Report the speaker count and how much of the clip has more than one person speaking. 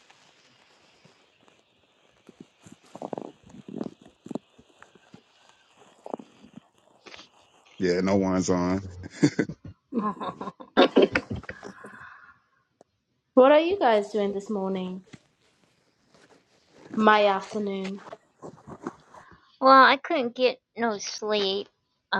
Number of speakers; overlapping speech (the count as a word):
three, no overlap